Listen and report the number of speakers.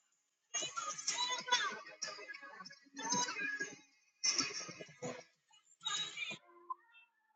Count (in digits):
0